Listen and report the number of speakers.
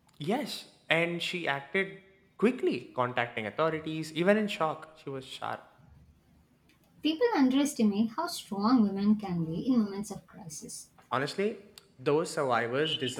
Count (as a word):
two